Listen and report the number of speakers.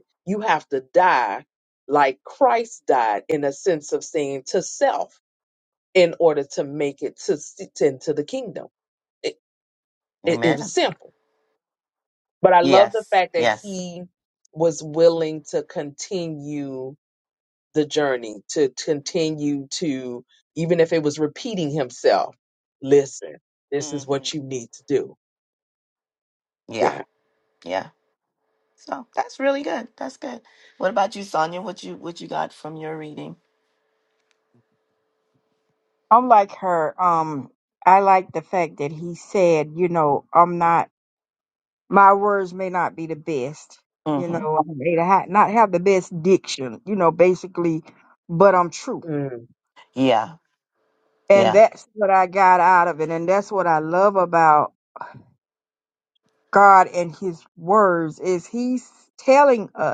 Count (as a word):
three